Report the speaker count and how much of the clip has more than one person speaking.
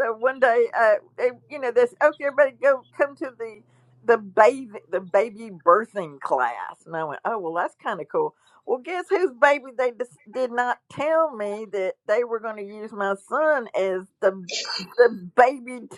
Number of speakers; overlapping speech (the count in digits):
1, no overlap